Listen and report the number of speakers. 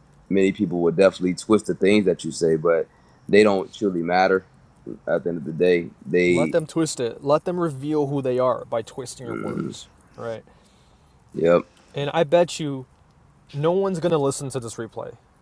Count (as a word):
two